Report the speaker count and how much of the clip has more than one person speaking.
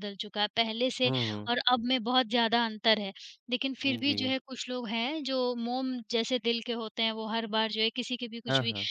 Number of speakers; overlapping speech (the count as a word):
two, about 14%